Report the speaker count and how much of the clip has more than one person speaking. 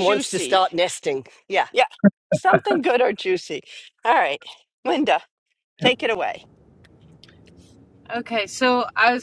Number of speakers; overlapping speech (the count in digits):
3, about 7%